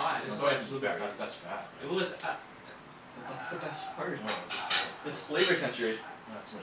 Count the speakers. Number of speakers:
3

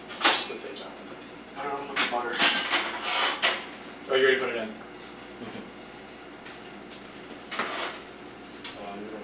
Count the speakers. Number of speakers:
2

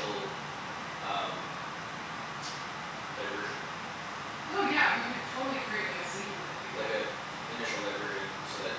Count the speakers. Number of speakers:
2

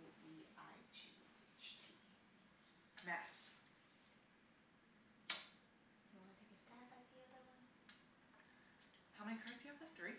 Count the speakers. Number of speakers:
2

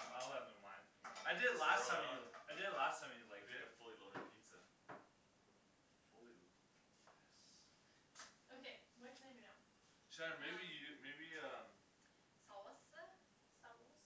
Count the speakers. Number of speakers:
4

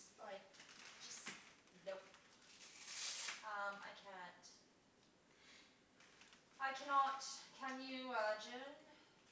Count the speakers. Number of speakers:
1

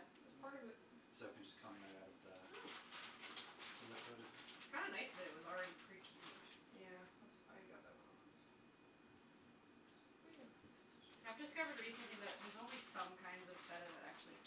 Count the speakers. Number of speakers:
3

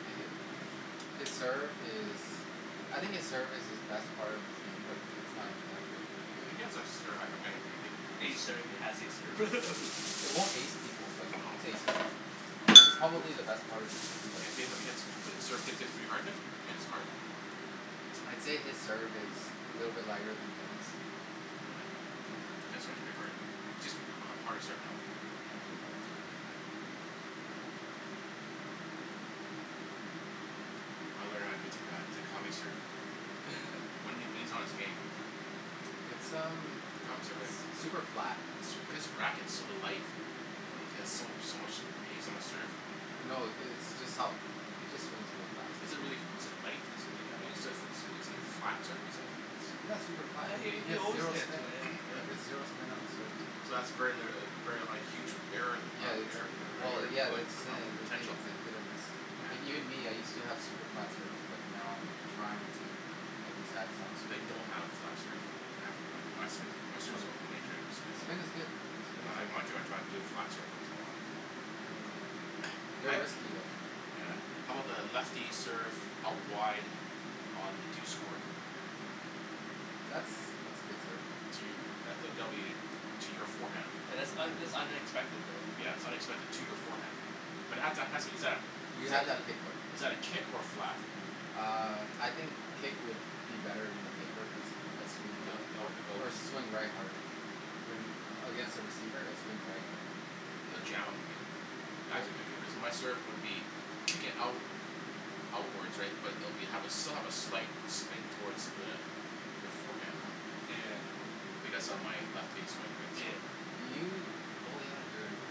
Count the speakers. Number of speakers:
3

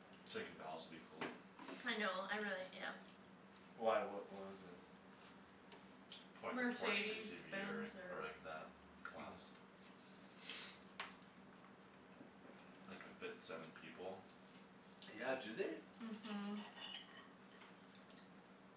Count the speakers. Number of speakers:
3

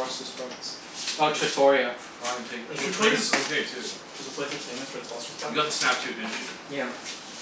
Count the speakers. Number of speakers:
3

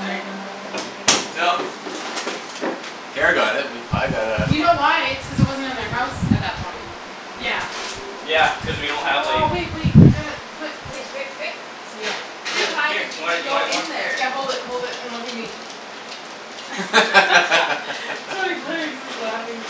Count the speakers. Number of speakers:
4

